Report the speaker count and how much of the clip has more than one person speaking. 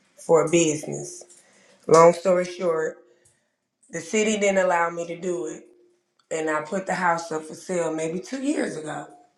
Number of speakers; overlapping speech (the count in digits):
1, no overlap